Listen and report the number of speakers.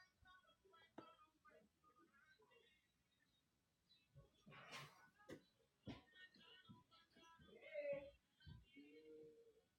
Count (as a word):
zero